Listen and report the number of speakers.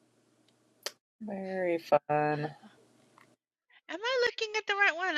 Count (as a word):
two